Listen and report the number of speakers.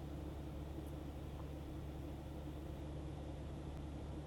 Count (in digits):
0